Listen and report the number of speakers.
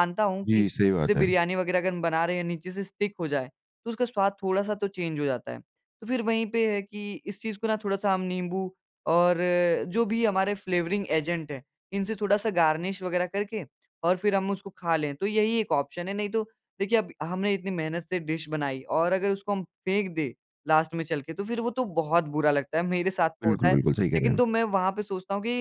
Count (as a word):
two